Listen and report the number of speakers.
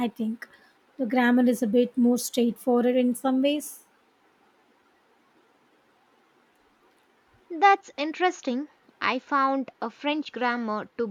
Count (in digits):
2